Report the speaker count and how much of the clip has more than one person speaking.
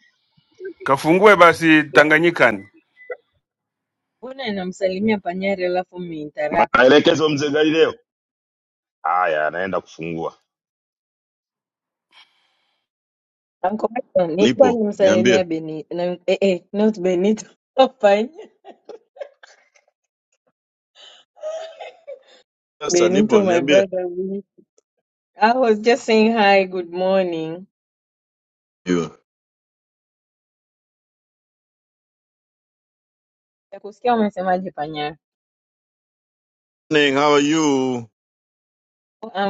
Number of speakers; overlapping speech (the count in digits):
4, about 6%